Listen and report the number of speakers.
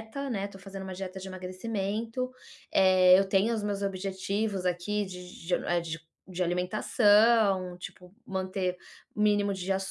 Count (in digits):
1